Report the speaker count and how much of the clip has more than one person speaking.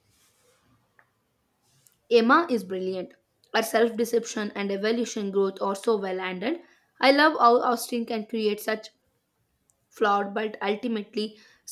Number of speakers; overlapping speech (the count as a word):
one, no overlap